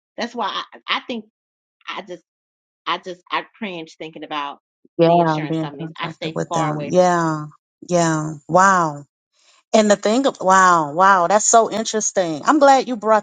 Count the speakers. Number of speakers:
two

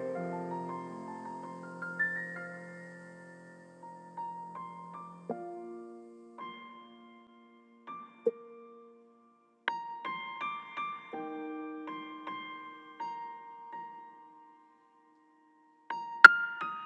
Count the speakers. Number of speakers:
zero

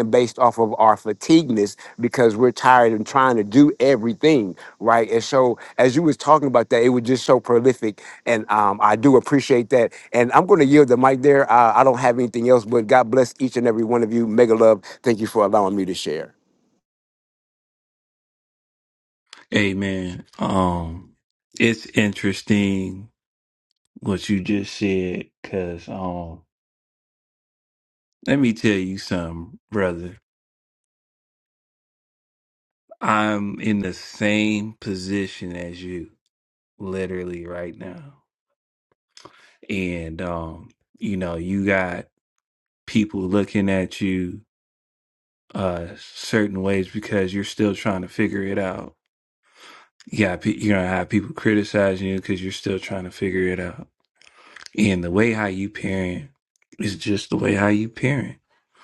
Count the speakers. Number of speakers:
two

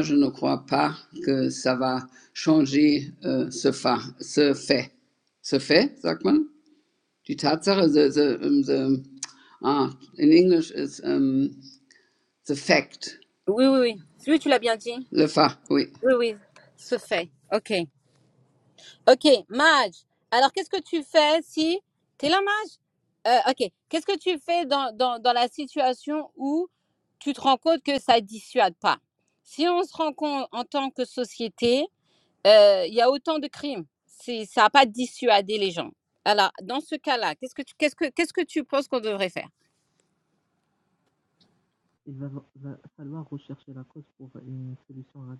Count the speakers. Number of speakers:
three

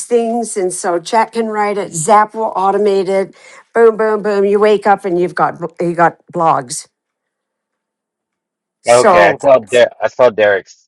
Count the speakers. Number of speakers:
two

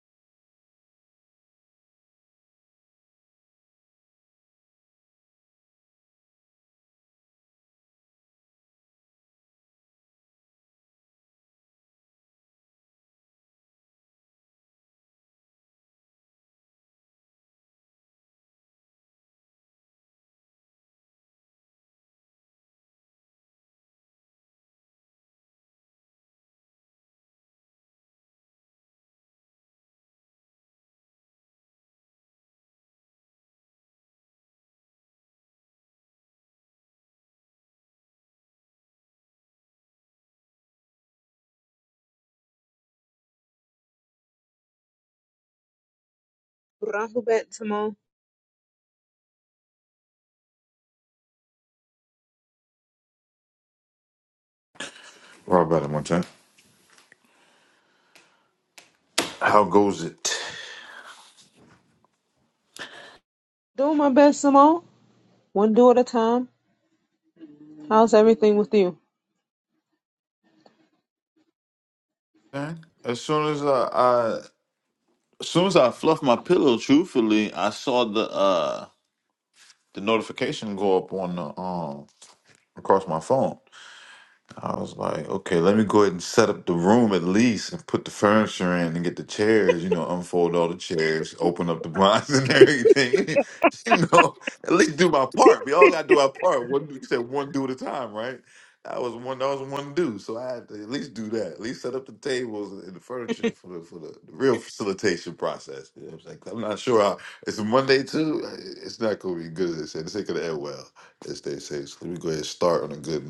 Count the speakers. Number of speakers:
two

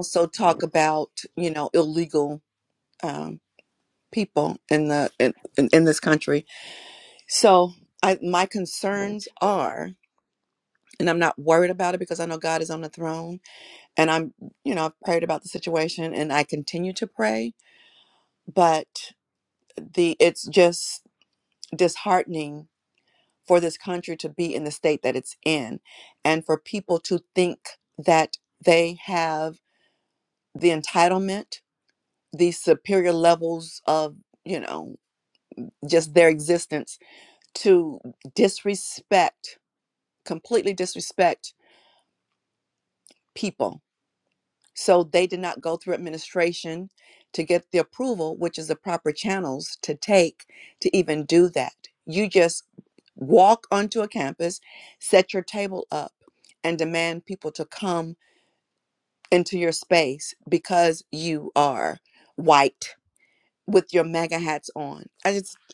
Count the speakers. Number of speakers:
one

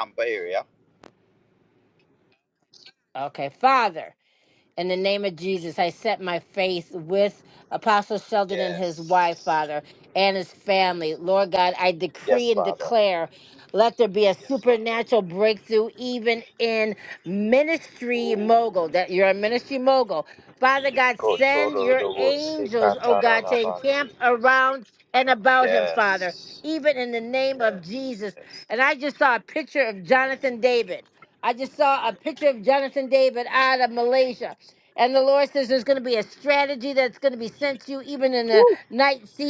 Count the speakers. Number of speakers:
two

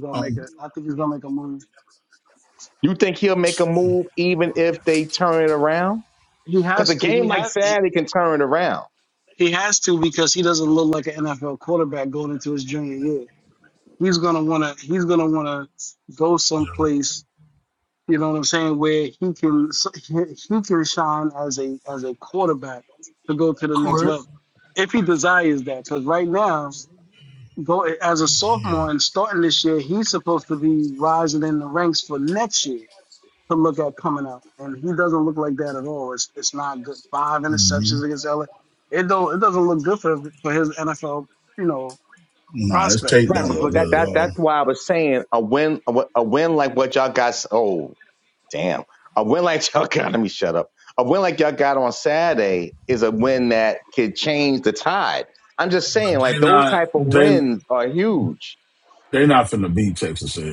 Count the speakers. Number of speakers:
three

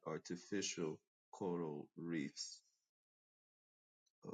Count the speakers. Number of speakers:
one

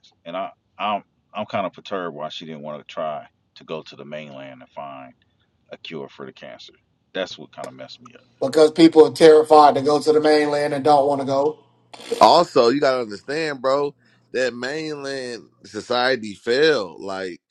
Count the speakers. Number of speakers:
three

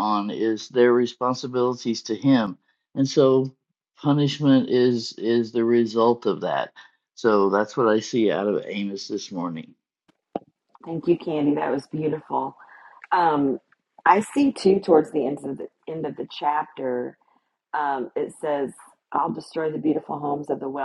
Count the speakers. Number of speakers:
two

